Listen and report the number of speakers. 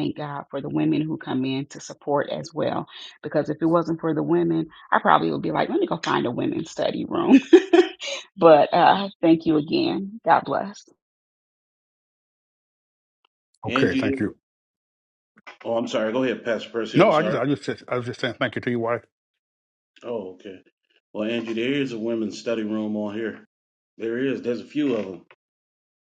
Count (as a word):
three